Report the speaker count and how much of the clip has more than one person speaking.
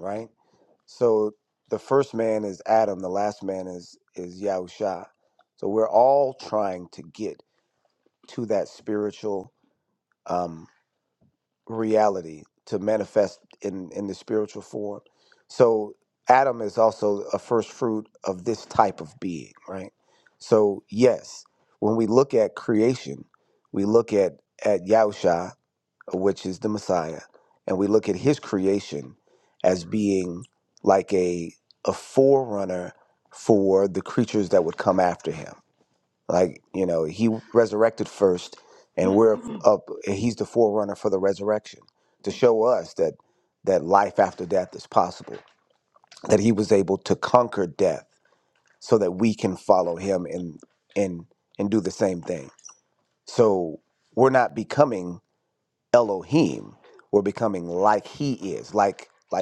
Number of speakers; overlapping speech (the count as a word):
one, no overlap